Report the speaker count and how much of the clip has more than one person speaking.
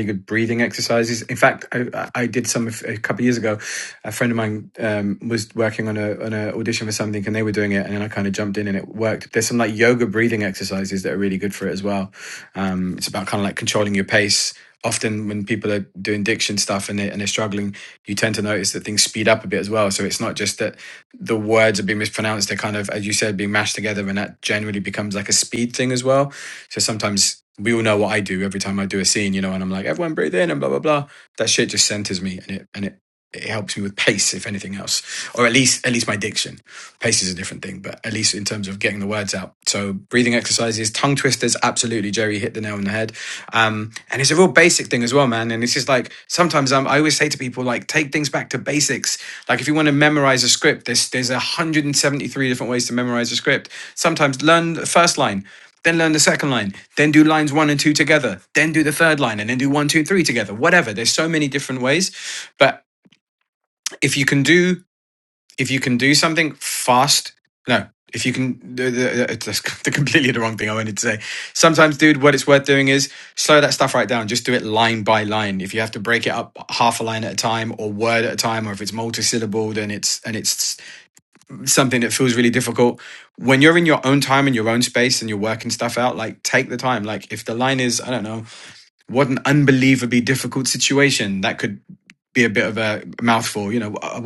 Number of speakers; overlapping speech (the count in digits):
1, no overlap